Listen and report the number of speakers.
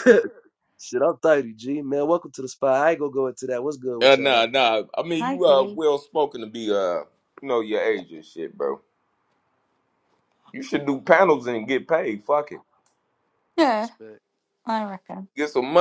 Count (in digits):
3